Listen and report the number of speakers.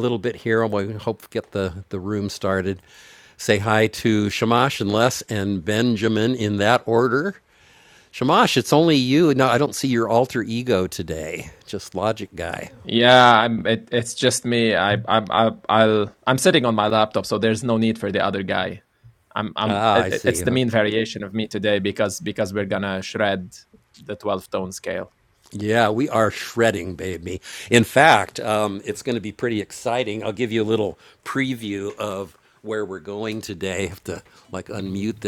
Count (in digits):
2